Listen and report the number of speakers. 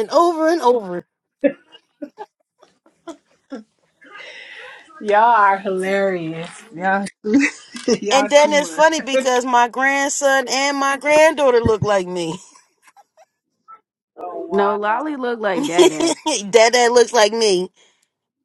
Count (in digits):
3